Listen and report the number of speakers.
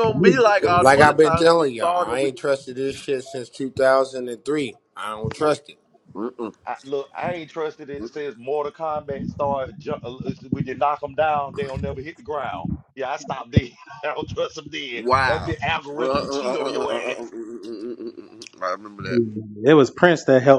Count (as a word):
four